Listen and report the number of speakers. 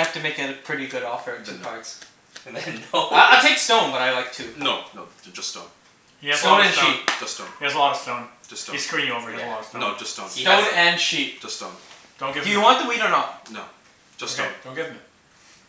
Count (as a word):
four